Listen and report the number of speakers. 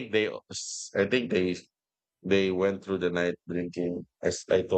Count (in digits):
1